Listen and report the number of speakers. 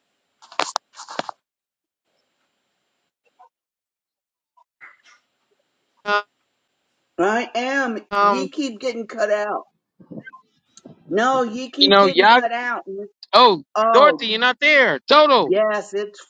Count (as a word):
two